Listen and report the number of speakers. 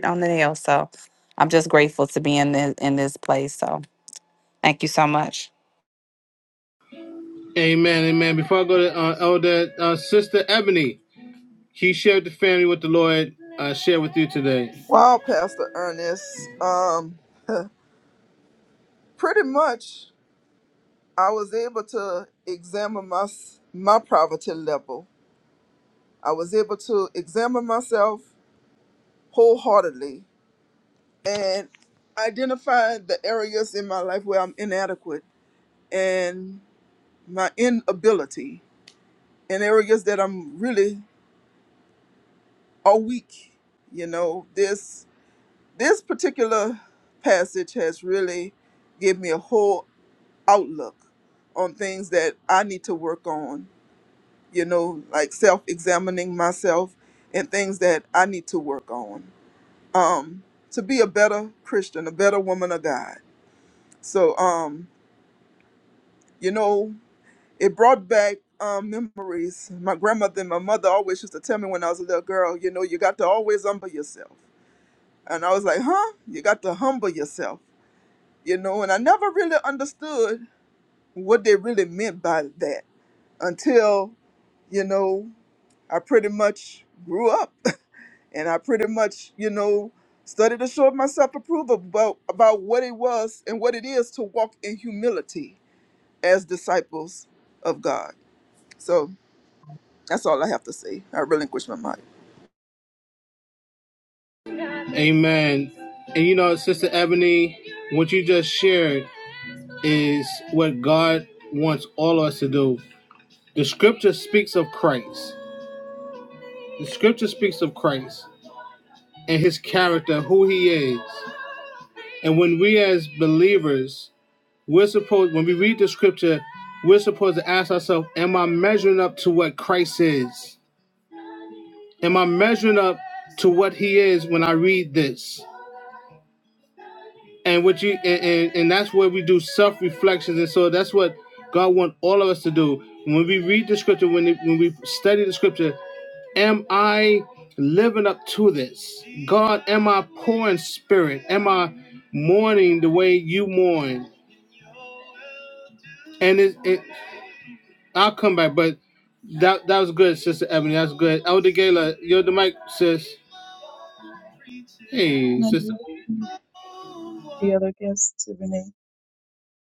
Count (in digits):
4